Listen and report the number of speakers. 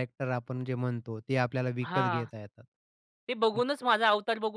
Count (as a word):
two